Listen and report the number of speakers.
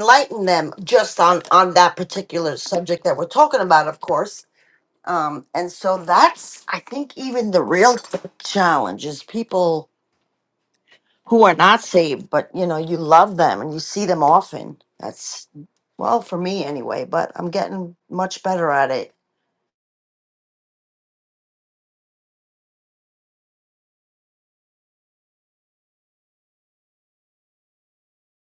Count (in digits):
1